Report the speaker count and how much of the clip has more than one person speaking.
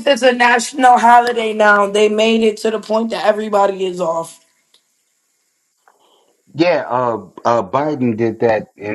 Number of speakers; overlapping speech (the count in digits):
2, no overlap